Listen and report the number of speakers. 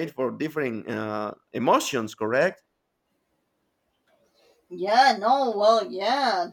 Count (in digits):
2